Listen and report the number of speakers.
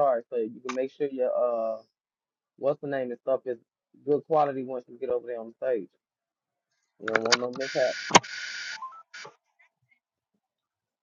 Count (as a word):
one